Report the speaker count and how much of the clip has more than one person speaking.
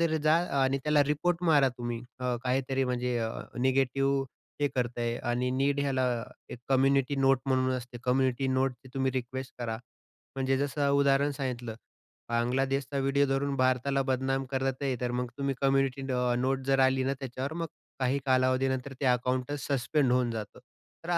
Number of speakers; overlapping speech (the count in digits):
1, no overlap